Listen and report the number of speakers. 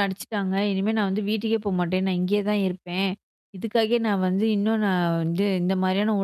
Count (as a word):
one